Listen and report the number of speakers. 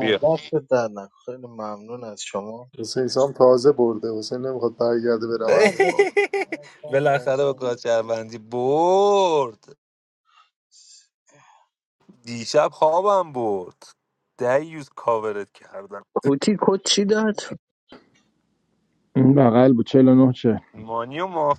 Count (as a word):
five